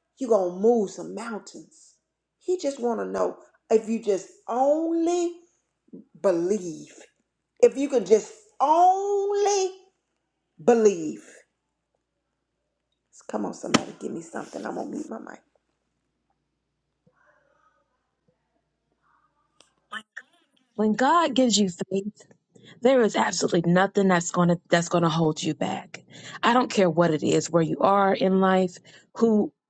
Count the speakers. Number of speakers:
2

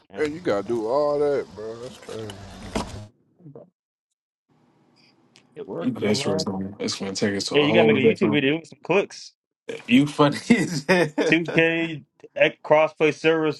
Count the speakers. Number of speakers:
3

